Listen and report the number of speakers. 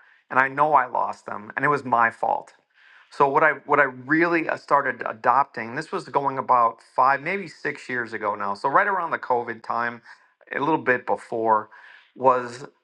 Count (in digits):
1